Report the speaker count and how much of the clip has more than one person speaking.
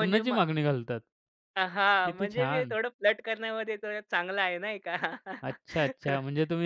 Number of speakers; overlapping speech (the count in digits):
2, about 16%